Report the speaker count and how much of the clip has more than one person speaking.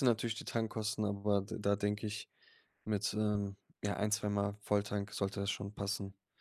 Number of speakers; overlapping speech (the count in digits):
1, no overlap